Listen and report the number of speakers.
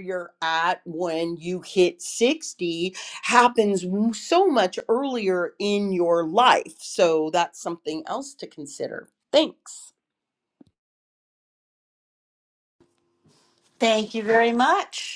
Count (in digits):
2